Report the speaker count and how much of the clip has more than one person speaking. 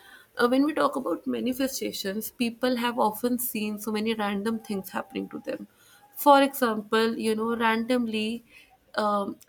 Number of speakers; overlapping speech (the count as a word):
one, no overlap